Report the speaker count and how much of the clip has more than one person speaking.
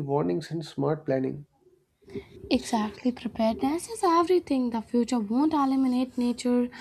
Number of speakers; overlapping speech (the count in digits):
2, no overlap